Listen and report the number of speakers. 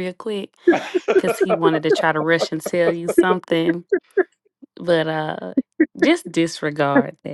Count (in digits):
1